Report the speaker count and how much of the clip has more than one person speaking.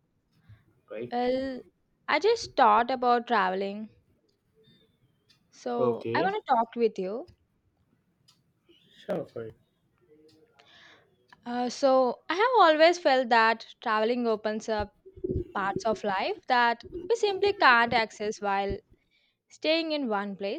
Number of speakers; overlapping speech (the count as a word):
two, about 3%